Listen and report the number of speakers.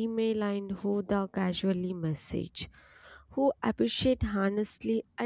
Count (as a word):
one